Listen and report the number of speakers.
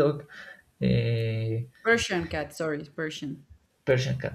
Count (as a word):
two